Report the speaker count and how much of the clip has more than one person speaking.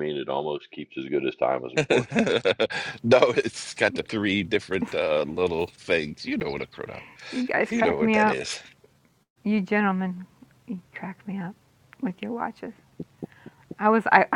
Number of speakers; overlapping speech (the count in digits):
3, about 5%